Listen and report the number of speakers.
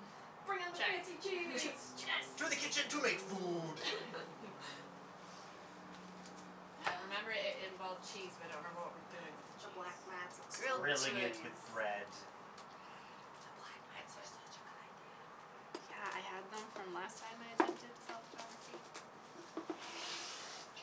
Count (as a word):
four